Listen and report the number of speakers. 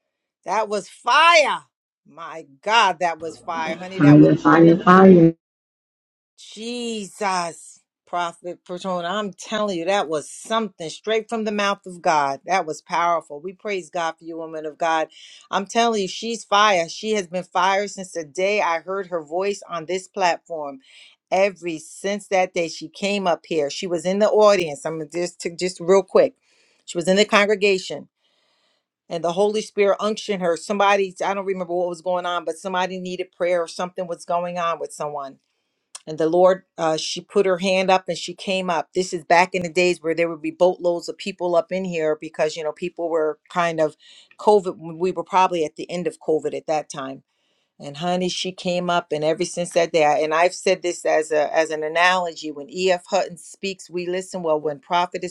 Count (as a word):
two